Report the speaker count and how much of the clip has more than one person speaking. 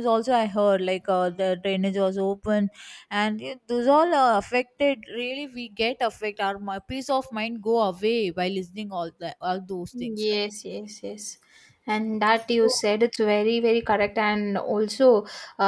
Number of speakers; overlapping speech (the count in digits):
2, about 3%